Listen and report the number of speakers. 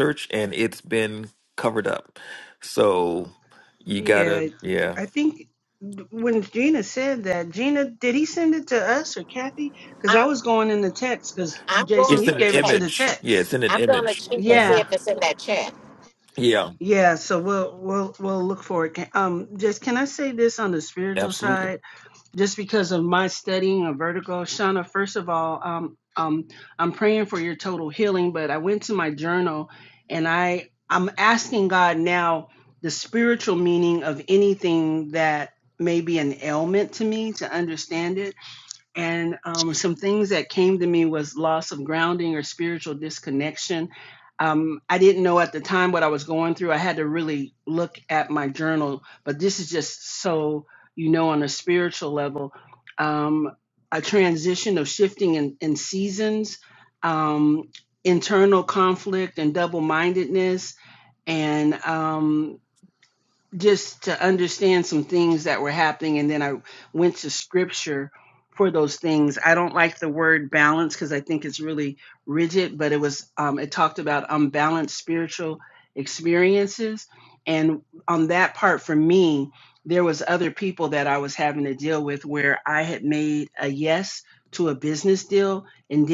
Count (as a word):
three